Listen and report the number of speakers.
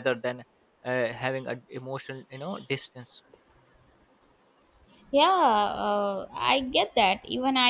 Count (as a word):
two